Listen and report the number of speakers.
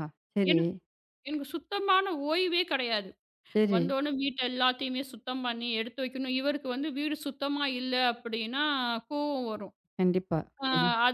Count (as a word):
two